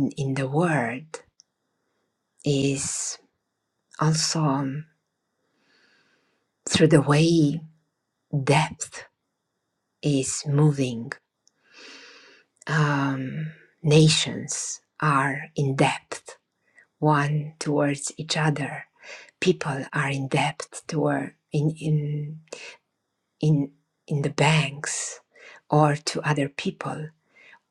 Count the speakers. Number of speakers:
one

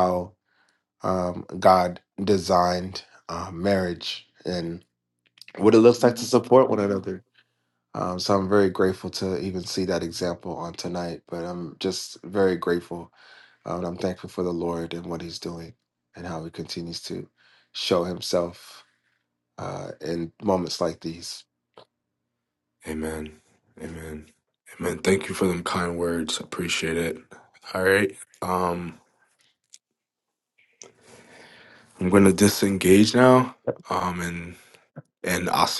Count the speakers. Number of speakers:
two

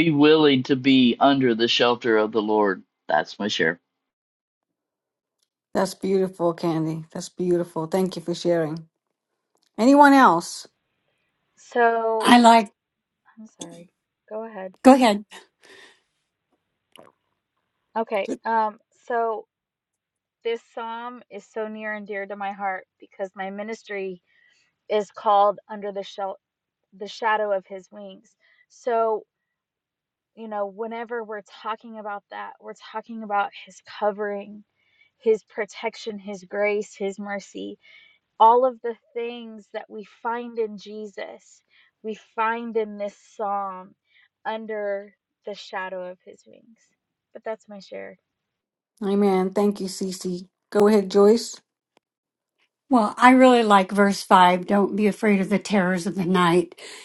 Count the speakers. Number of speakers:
four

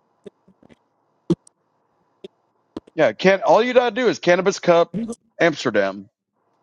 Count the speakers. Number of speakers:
one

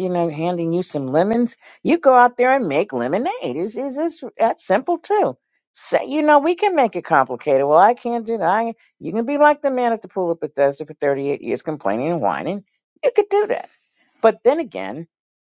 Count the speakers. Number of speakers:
one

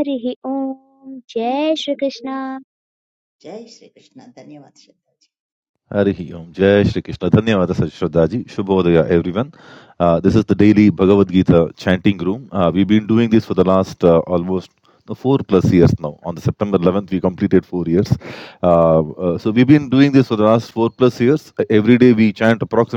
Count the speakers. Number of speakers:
three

